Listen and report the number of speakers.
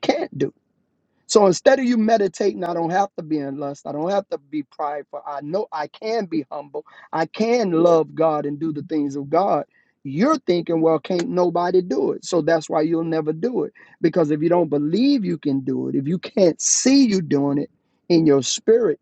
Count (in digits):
1